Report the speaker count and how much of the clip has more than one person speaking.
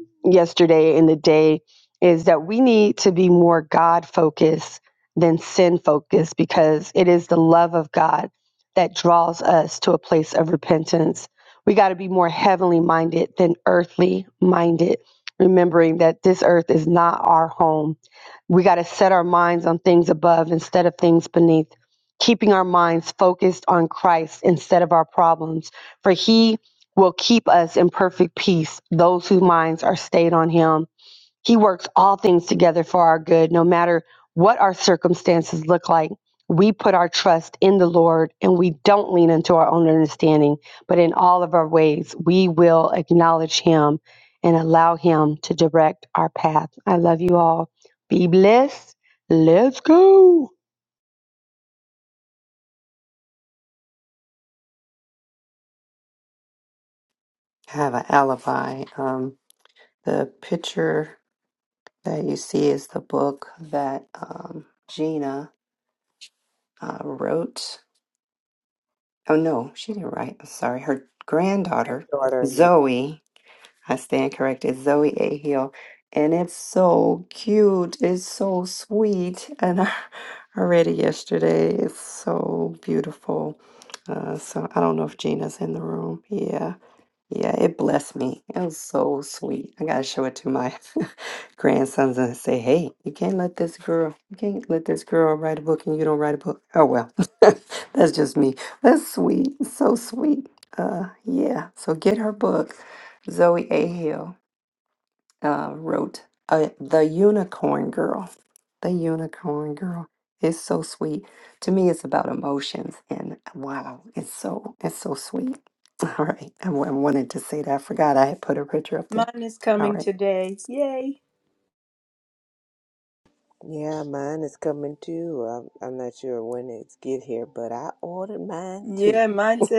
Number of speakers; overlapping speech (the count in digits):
4, about 1%